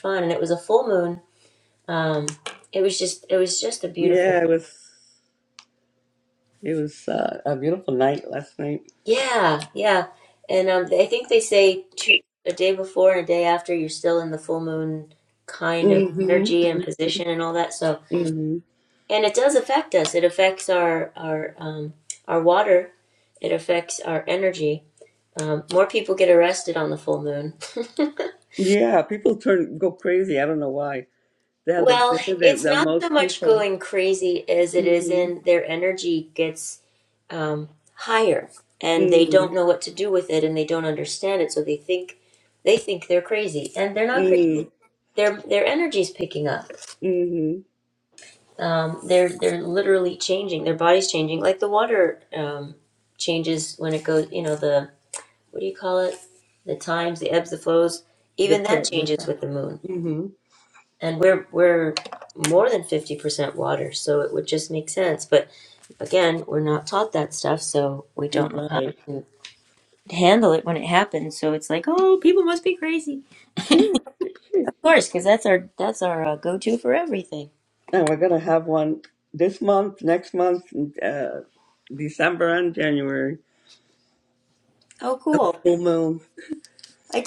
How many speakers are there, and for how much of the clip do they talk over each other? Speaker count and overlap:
2, about 7%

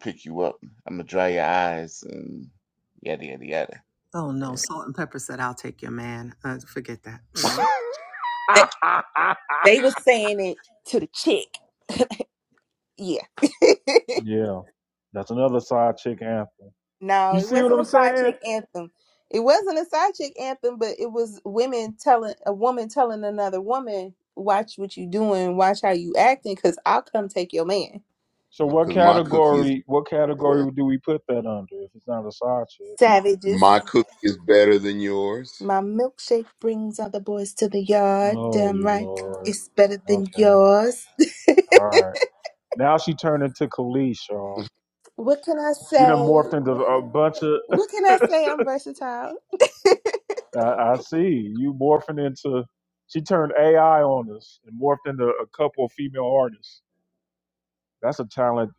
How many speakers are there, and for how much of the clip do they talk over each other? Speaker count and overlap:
5, about 7%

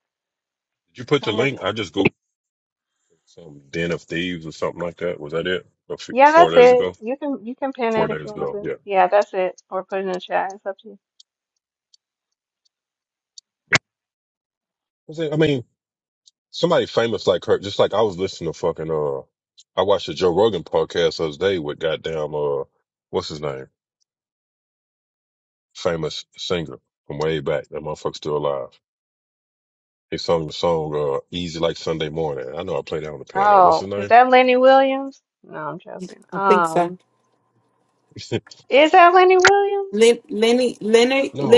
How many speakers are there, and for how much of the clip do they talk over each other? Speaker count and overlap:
3, about 8%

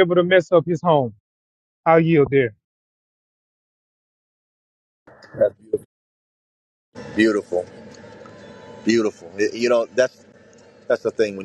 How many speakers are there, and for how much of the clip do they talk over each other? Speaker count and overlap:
2, no overlap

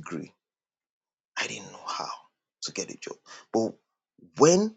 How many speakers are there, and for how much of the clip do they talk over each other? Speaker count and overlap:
1, no overlap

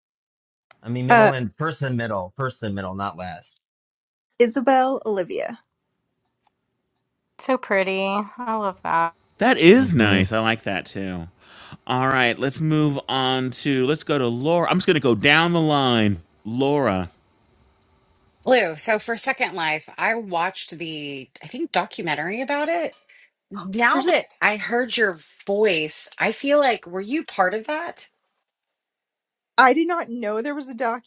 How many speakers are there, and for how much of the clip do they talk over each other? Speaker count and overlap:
5, about 3%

